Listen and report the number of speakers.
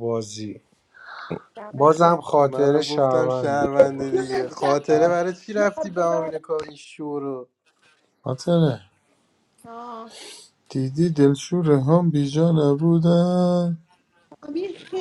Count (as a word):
four